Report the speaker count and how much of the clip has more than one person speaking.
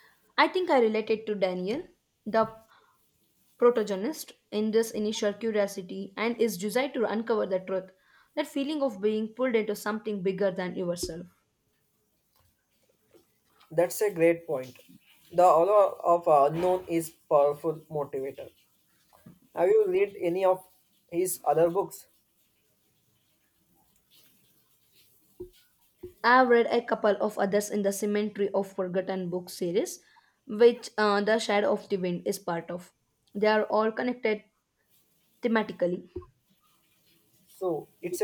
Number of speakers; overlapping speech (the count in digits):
2, no overlap